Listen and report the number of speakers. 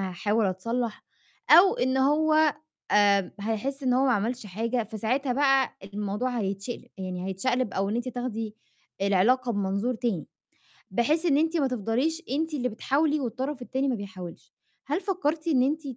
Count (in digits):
1